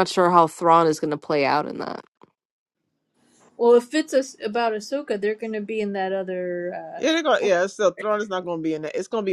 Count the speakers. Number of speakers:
3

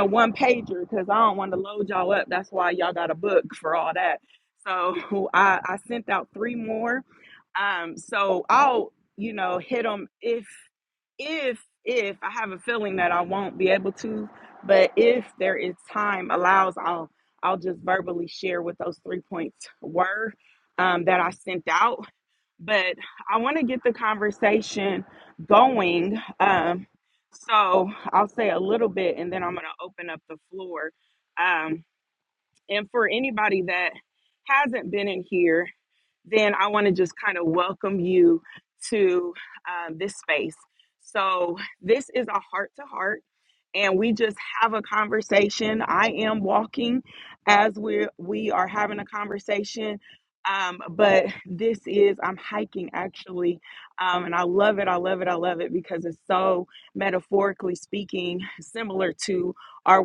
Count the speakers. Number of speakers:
1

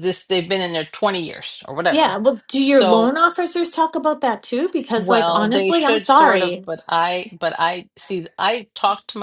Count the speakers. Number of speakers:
2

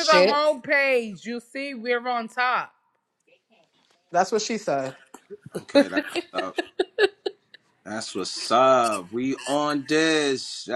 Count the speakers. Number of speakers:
3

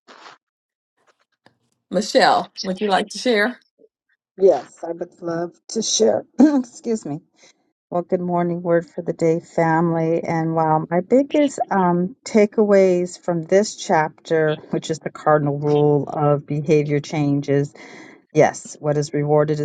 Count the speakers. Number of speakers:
2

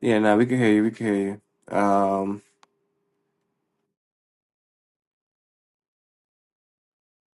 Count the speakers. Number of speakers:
1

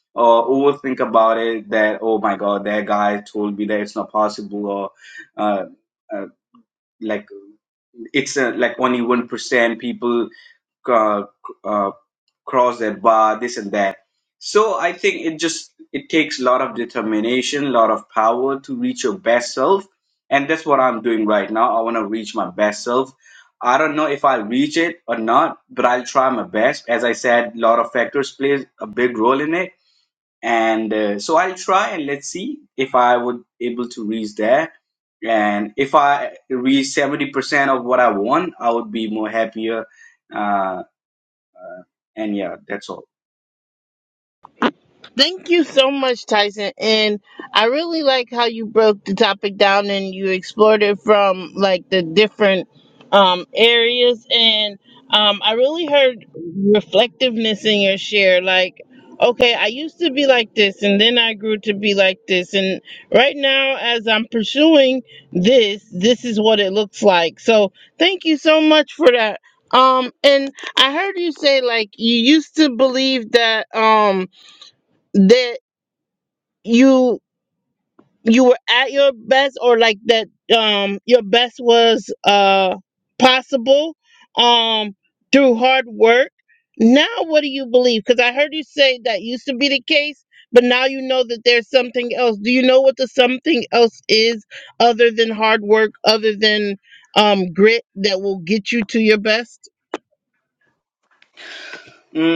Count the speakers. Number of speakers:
2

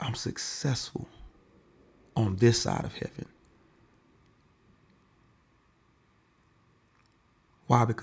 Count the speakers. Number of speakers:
1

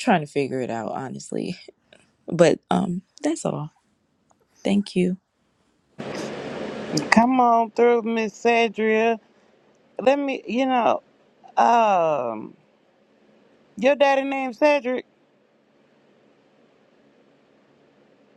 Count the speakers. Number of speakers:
2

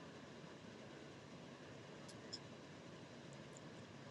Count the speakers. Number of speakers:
0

